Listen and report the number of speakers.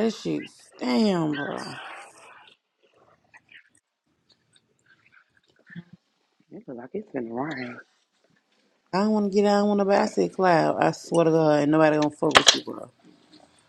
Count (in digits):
2